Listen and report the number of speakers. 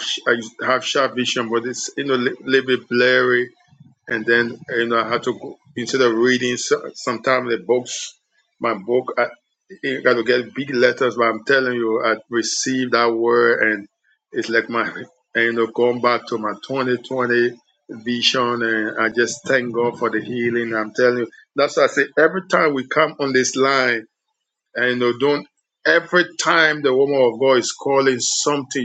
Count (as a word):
one